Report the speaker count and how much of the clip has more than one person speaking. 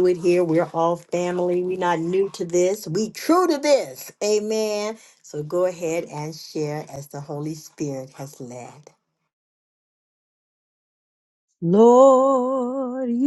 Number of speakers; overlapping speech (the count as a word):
two, no overlap